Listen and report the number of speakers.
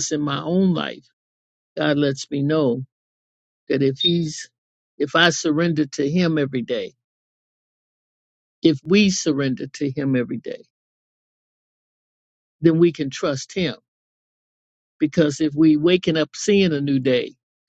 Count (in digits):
1